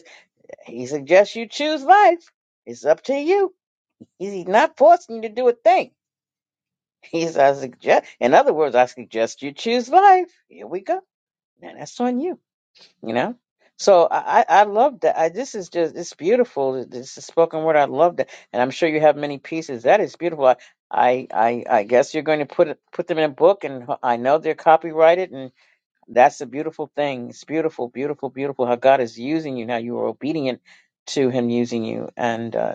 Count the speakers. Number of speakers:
1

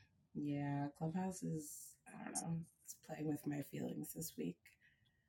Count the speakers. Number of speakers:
1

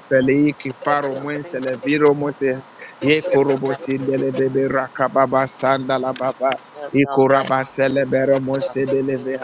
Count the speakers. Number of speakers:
1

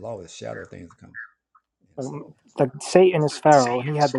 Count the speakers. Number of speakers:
2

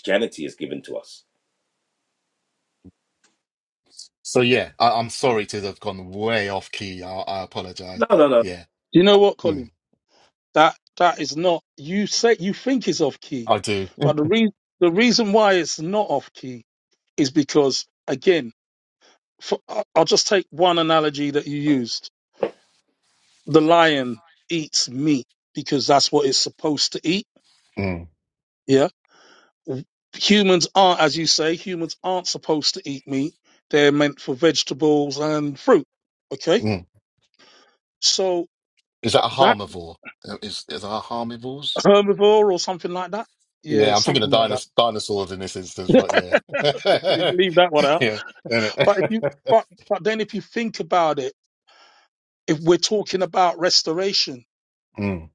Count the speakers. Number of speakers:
3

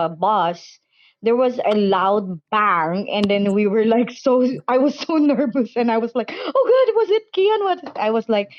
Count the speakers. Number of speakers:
1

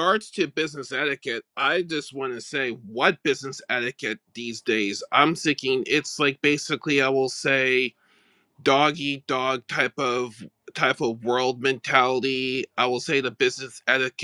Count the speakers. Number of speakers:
1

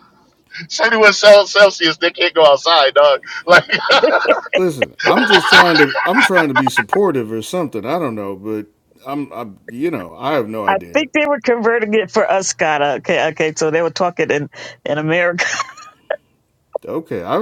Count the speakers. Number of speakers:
3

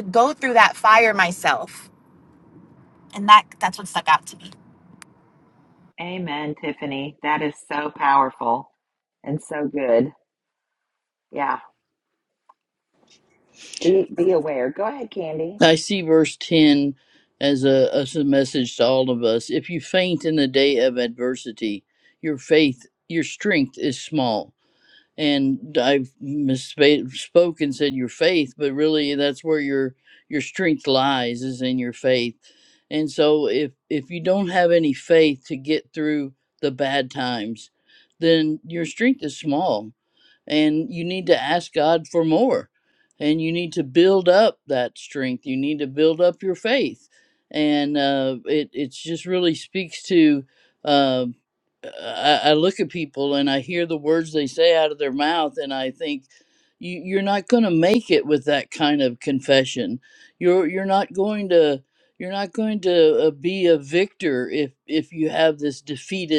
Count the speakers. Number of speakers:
3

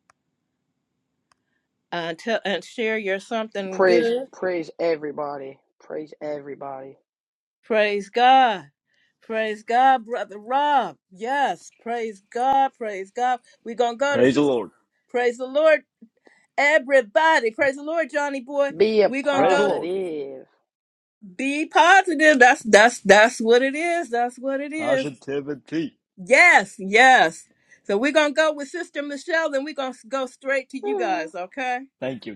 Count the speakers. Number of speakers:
3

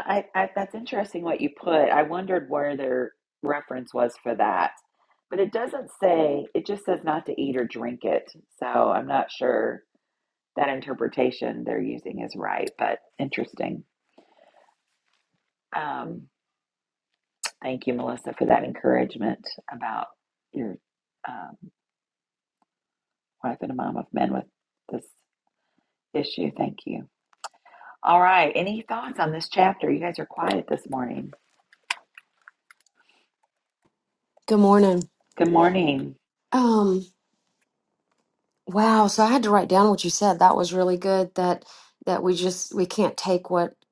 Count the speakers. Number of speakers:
2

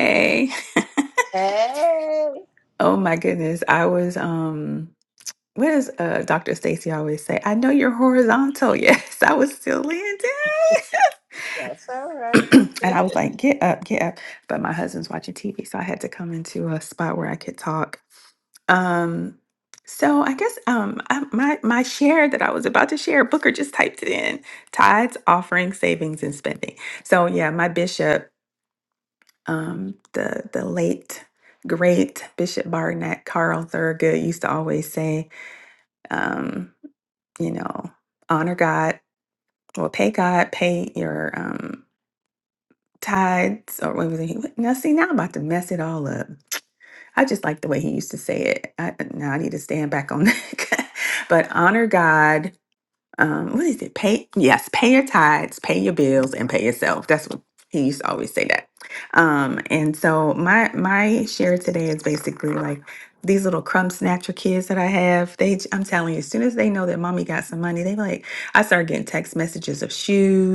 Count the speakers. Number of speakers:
2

